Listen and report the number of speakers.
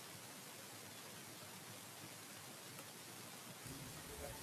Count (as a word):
zero